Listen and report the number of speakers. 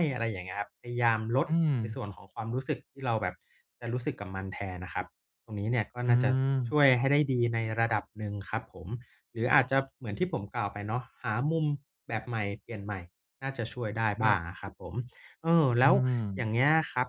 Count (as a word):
two